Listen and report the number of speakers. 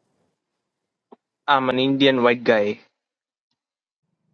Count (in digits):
1